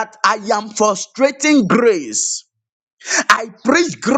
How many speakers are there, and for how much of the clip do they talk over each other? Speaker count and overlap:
one, no overlap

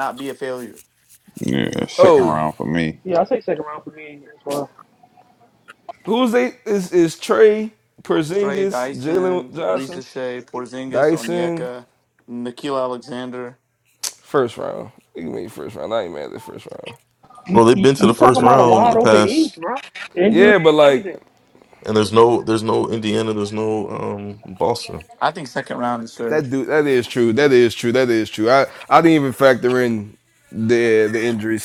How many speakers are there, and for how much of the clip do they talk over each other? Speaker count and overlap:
five, about 18%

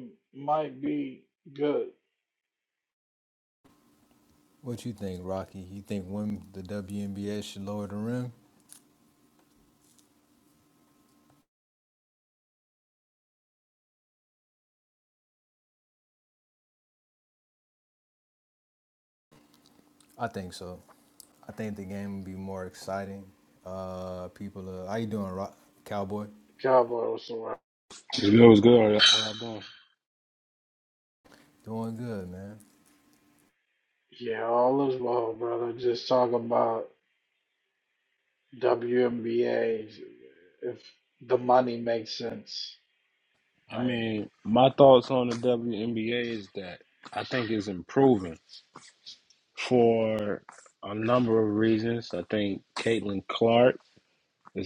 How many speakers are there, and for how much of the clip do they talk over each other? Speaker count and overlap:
three, under 1%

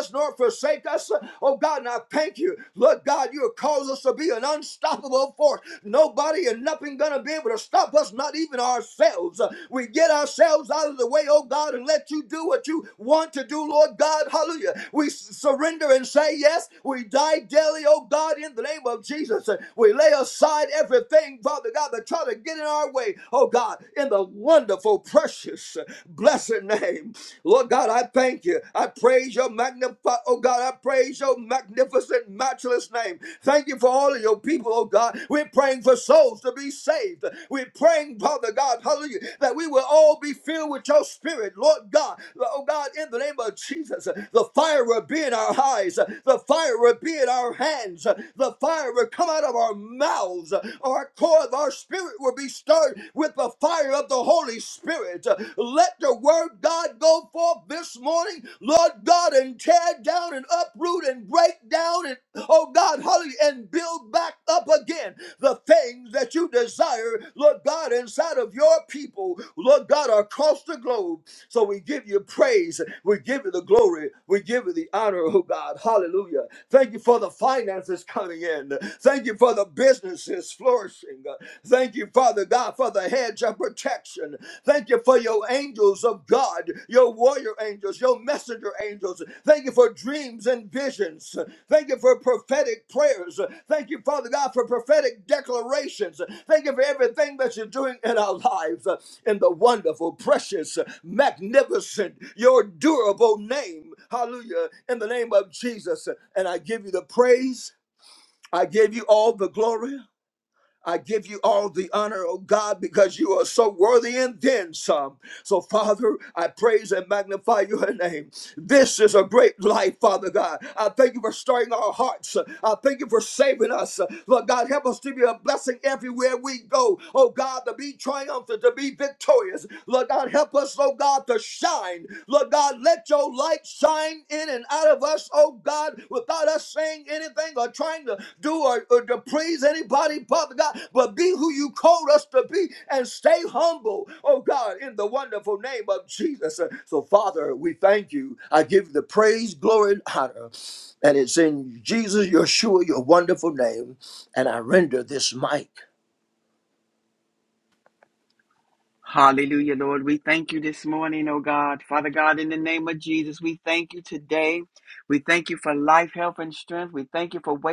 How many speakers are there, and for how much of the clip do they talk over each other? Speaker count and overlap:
two, no overlap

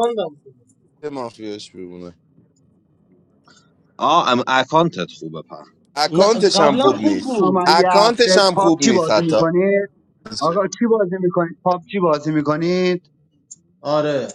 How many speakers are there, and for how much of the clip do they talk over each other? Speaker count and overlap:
four, about 24%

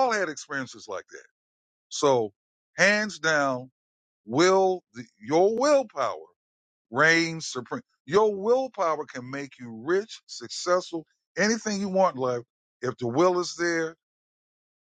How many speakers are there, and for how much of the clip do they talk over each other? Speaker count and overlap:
one, no overlap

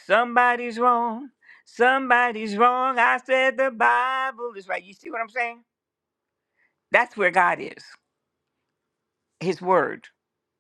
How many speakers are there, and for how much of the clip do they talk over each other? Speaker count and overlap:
one, no overlap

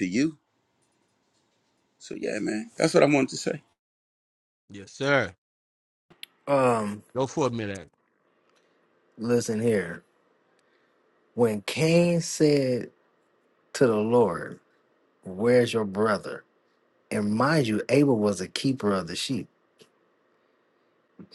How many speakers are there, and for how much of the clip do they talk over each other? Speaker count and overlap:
three, no overlap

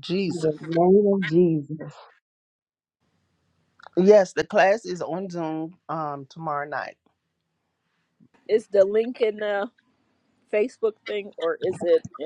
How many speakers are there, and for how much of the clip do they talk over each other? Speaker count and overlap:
three, about 2%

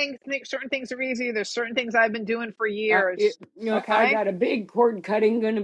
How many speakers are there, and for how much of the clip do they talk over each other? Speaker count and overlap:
two, about 15%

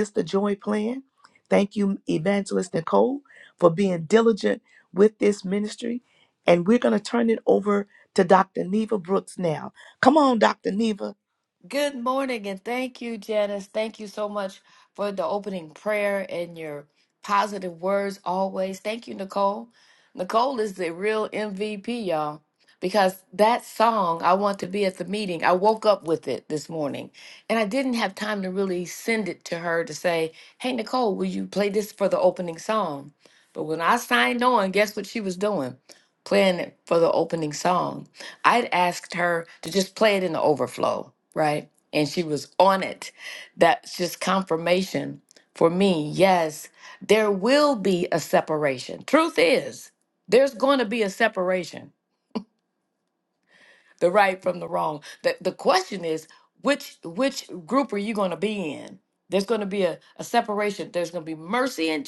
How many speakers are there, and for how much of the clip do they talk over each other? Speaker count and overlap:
two, no overlap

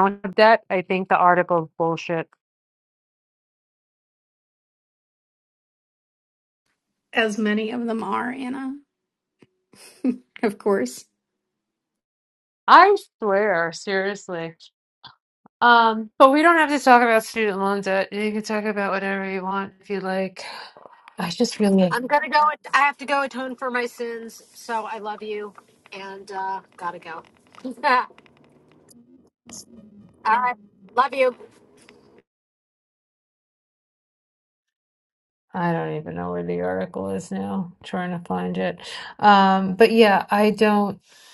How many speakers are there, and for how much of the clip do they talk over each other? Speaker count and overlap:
three, no overlap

